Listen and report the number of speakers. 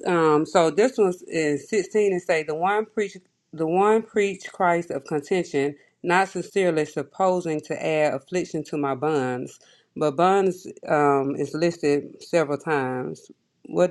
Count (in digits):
1